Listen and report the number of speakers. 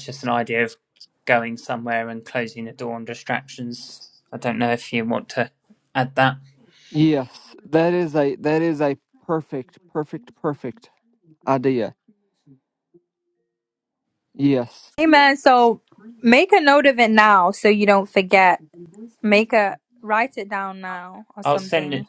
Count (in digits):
3